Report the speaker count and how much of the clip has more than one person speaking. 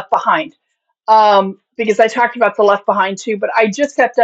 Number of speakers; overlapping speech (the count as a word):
one, no overlap